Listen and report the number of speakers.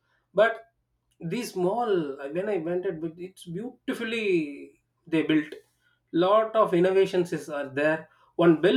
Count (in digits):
1